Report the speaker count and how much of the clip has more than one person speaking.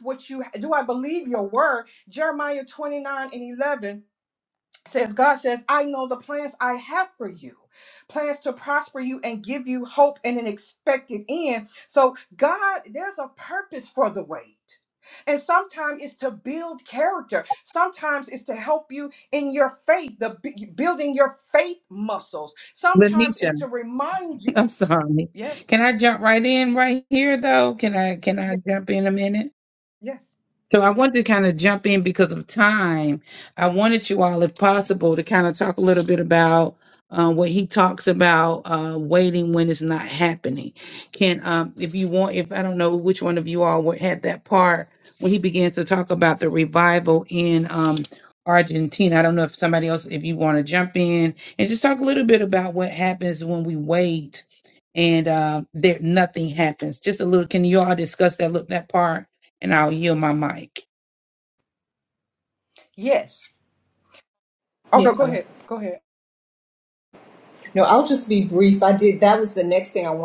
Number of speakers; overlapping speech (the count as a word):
three, about 2%